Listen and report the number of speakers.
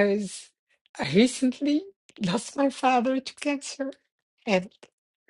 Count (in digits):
1